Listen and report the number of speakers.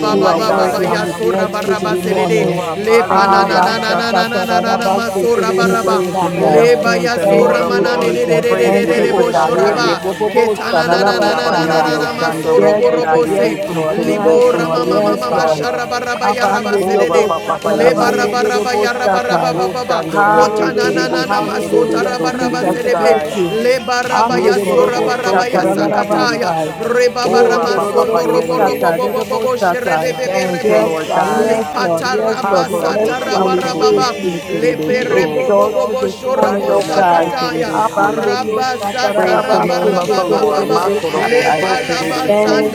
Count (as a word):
three